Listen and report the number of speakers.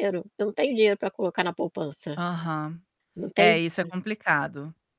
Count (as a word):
two